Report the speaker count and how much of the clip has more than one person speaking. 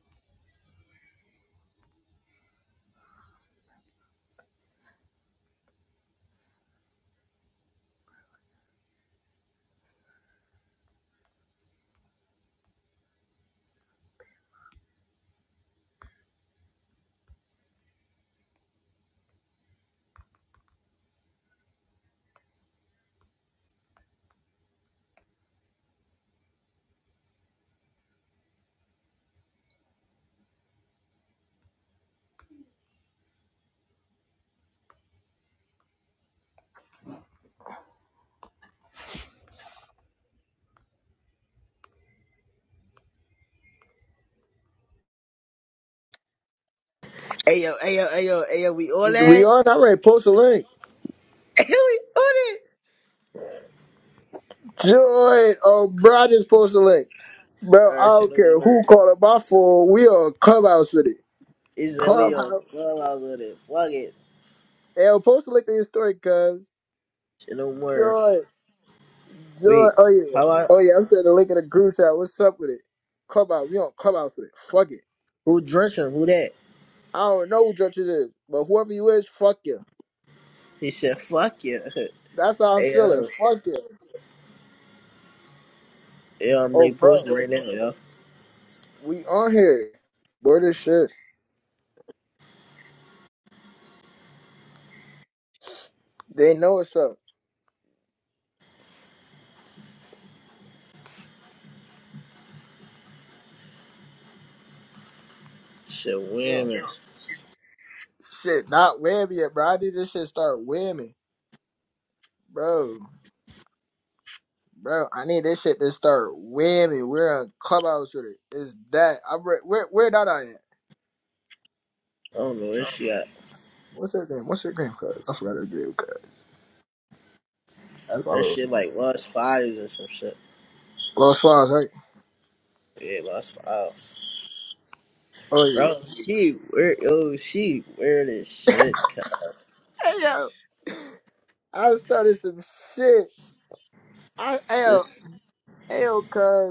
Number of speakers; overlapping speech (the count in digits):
2, about 3%